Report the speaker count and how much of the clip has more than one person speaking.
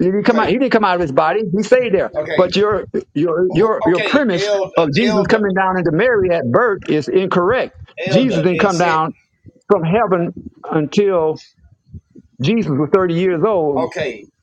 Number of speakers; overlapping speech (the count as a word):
two, about 22%